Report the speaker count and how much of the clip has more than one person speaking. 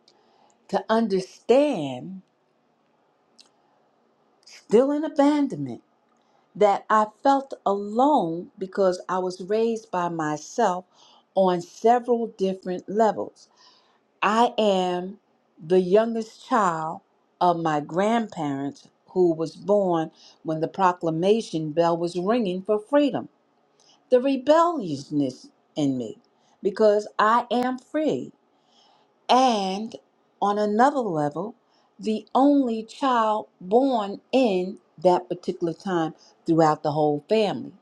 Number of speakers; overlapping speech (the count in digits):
1, no overlap